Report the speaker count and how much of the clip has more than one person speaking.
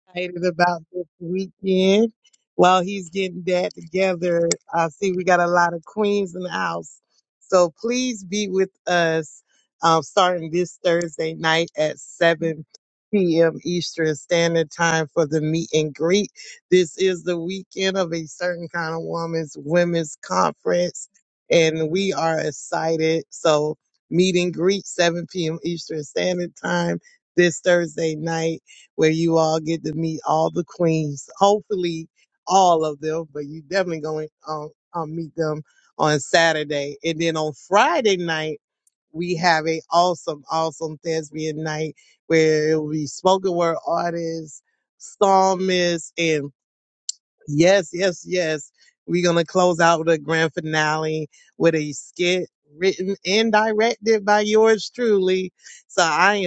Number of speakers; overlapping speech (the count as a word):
one, no overlap